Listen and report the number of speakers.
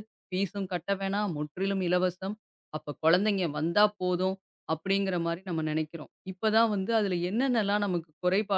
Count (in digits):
1